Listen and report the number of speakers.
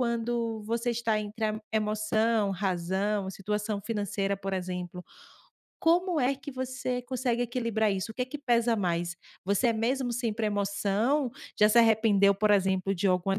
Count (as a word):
one